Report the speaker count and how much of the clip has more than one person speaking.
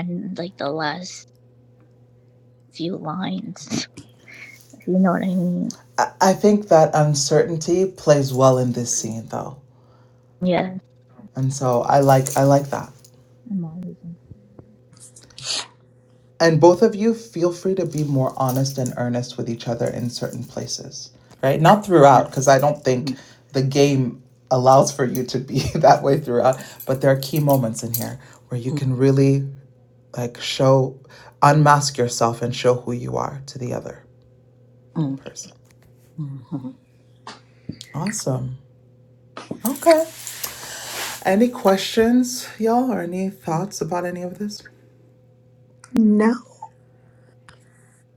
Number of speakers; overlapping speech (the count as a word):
three, under 1%